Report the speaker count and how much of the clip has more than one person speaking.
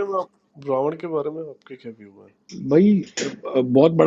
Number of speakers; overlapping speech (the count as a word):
two, no overlap